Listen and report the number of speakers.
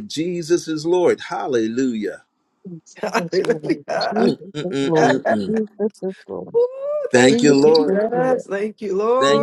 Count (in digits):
3